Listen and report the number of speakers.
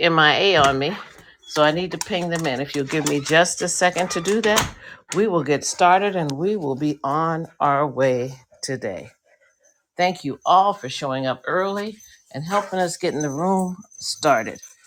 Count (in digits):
1